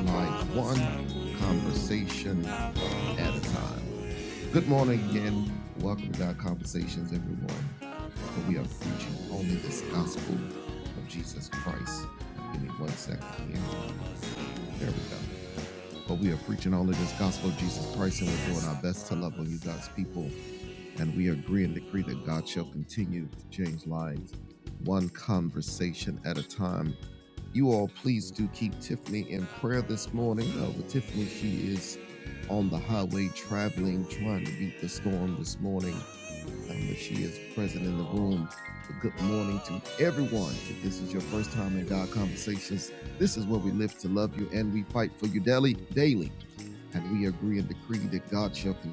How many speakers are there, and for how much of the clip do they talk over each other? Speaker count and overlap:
1, no overlap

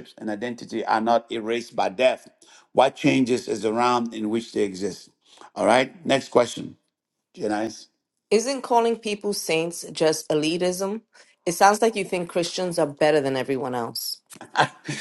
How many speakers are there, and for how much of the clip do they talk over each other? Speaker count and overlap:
2, no overlap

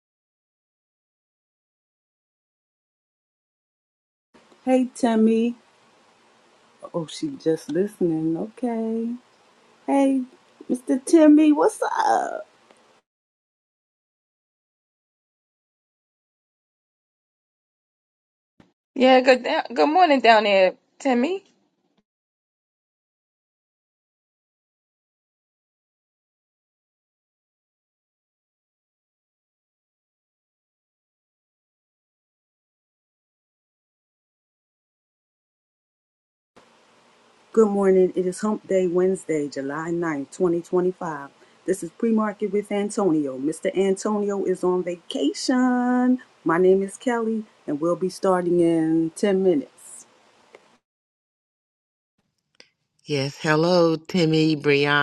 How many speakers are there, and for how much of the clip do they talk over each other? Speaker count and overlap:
3, no overlap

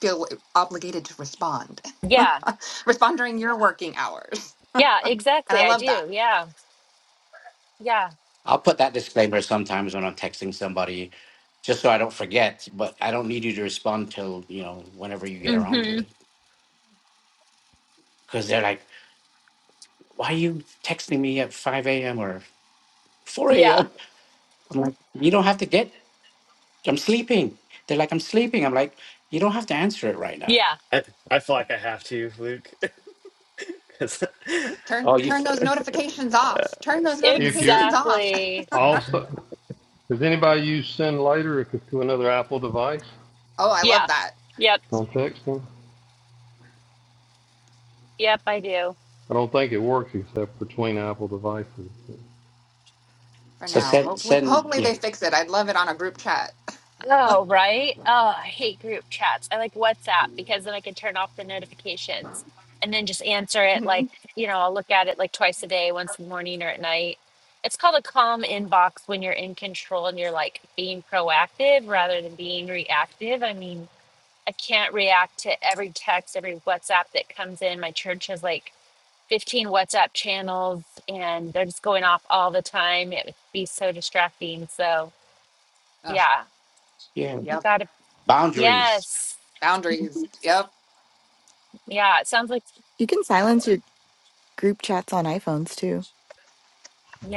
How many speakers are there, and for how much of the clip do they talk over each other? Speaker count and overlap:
6, about 6%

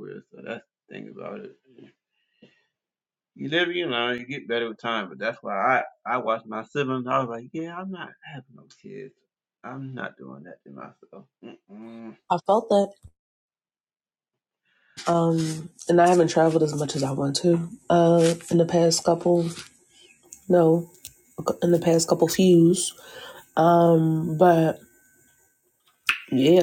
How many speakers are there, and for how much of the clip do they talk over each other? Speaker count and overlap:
2, no overlap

